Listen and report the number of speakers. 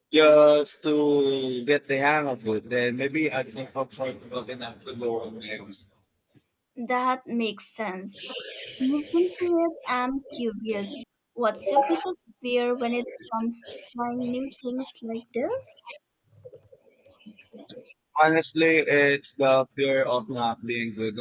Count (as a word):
two